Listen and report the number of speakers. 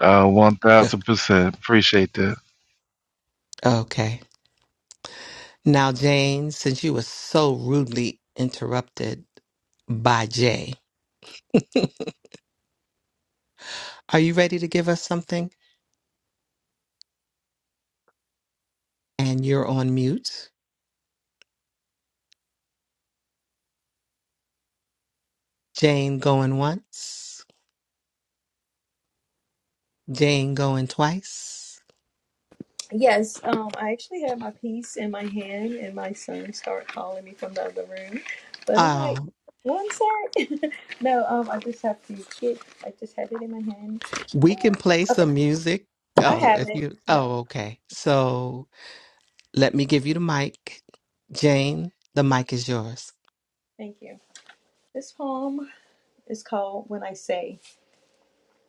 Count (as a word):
three